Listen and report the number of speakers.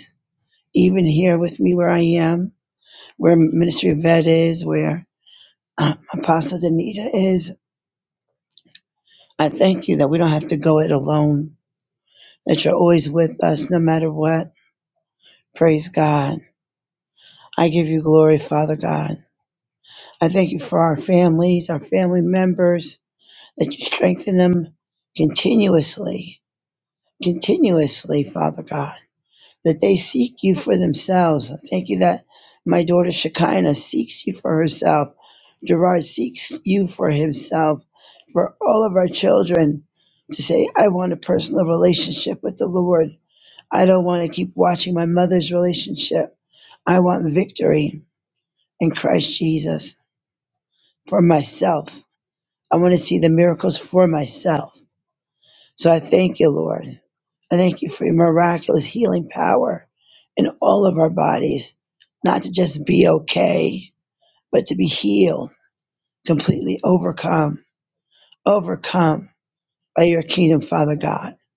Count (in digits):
1